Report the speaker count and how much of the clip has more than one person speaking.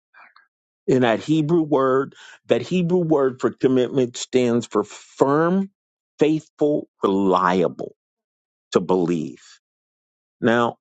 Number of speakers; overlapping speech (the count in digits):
1, no overlap